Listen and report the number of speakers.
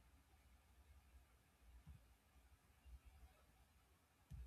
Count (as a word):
zero